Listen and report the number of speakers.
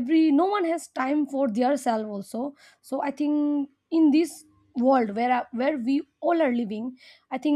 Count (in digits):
1